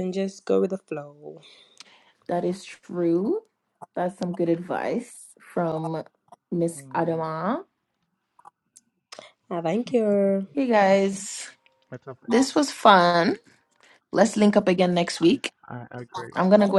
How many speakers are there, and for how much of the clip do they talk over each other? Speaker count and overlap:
3, about 3%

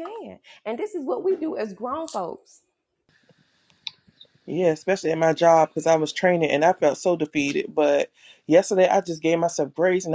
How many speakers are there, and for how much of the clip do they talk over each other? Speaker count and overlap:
2, no overlap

